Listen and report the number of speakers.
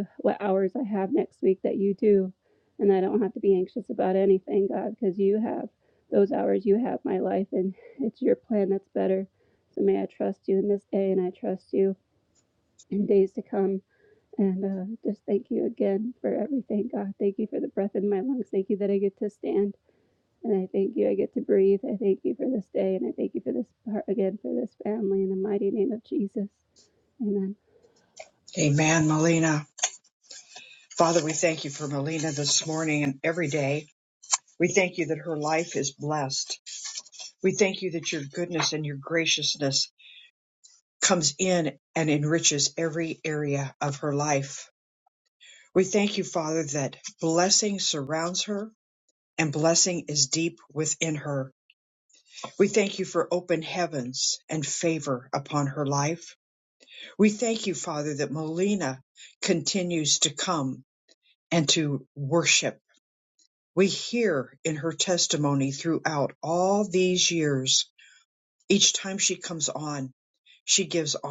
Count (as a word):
two